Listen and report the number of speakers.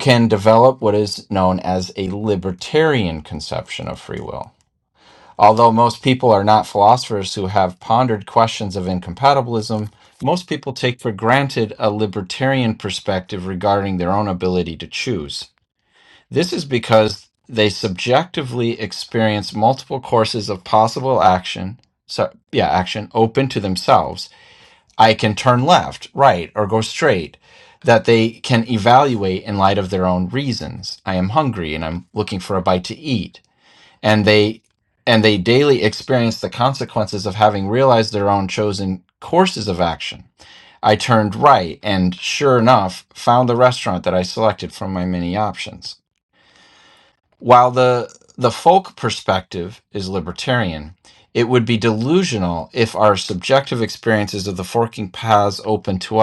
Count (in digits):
1